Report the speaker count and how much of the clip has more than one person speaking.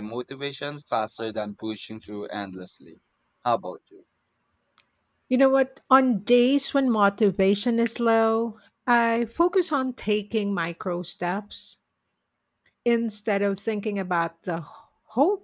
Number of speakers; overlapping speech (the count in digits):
2, no overlap